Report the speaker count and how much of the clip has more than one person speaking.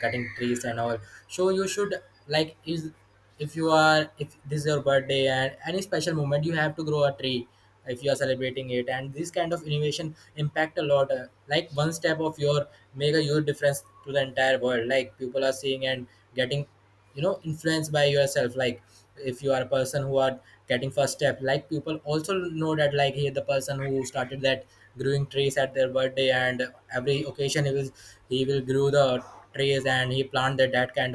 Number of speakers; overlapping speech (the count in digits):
1, no overlap